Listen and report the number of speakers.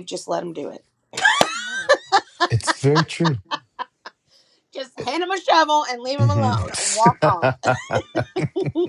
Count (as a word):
two